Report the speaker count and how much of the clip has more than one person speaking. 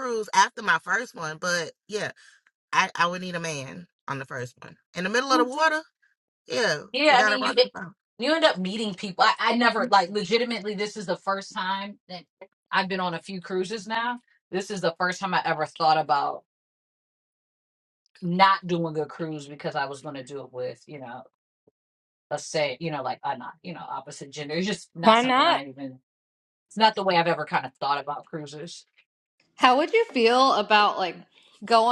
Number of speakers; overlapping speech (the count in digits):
3, about 4%